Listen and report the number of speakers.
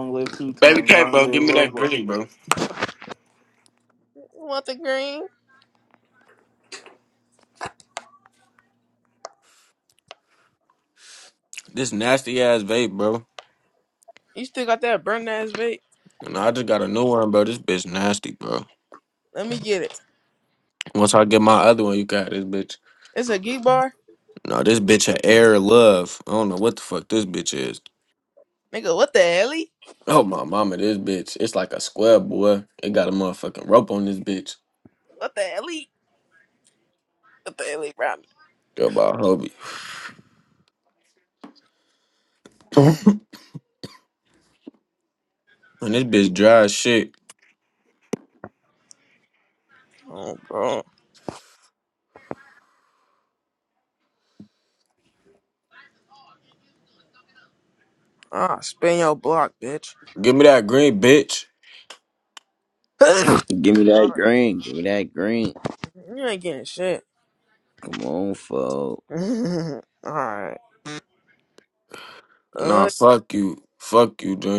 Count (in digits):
4